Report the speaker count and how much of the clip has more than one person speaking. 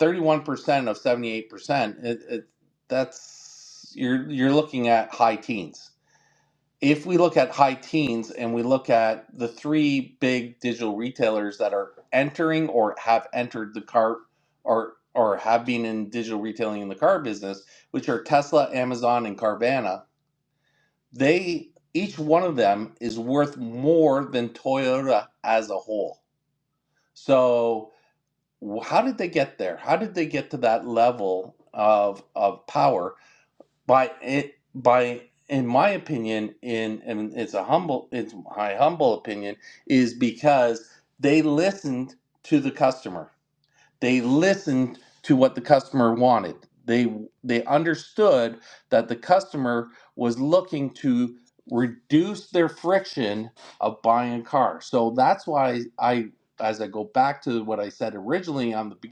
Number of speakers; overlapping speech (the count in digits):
1, no overlap